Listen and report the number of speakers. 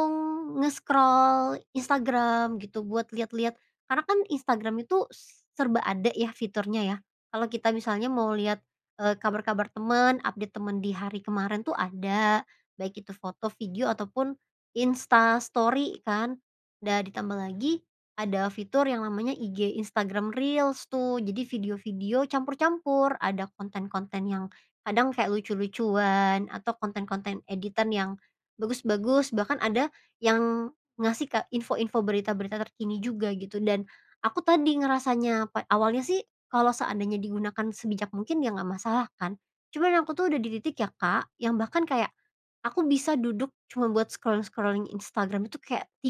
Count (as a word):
one